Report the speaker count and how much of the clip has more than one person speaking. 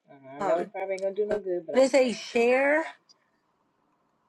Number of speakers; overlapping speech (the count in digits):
2, about 18%